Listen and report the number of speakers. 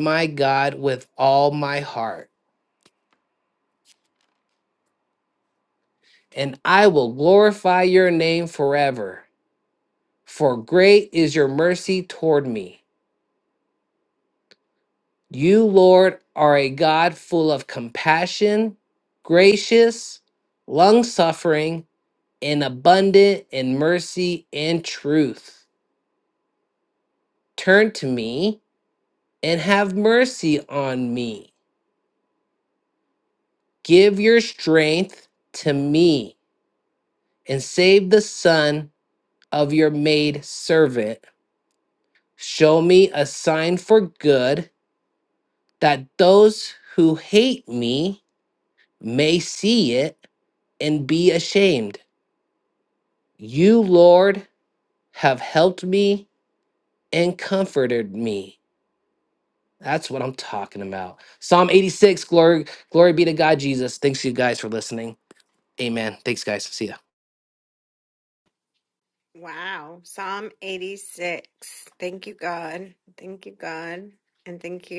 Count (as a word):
two